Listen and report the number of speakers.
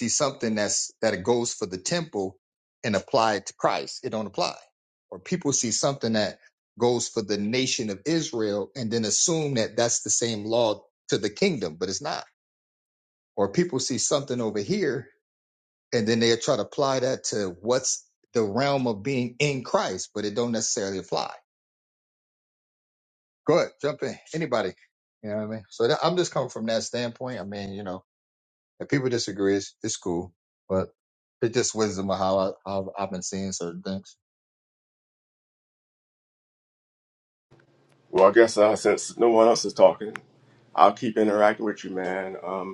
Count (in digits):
2